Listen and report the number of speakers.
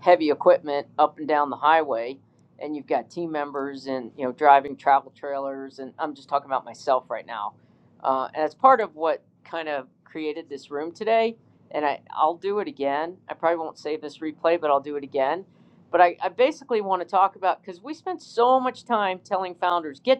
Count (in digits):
1